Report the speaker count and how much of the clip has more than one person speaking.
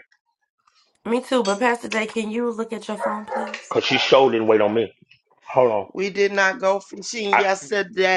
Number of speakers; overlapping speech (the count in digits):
3, about 2%